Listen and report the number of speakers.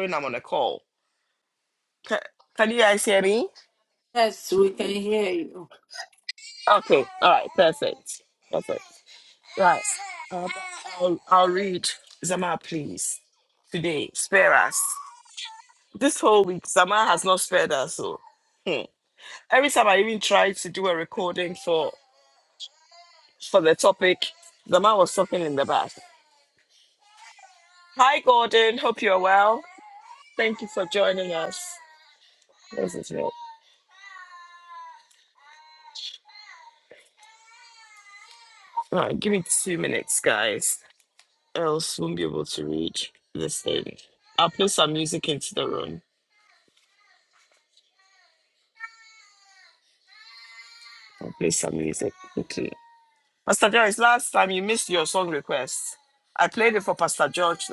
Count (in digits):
2